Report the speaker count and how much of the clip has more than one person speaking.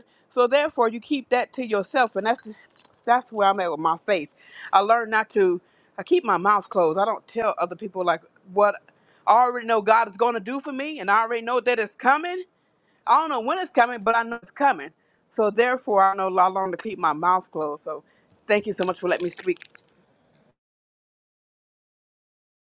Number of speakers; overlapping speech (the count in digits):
1, no overlap